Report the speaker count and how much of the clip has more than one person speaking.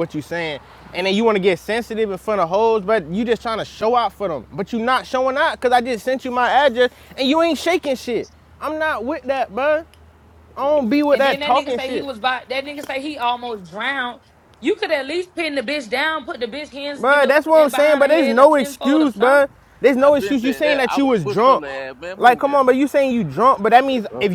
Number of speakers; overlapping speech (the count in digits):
3, about 22%